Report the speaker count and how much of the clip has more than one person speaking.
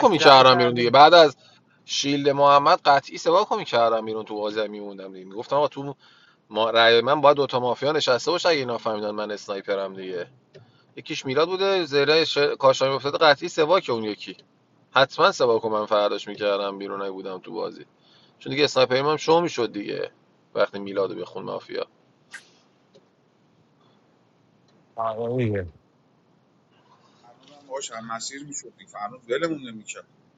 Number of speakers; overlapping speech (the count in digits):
3, about 3%